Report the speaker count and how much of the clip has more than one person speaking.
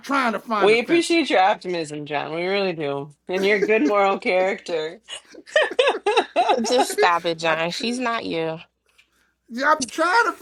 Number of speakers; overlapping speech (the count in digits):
3, about 9%